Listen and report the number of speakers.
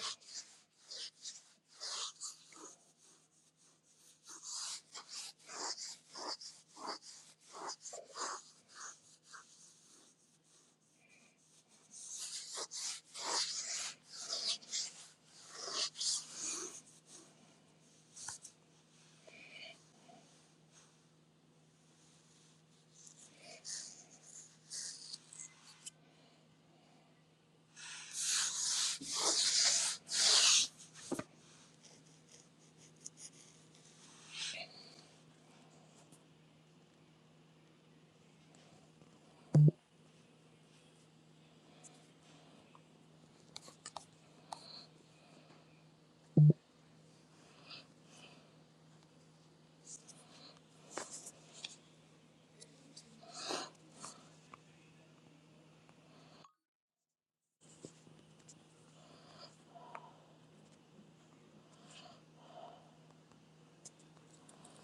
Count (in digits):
0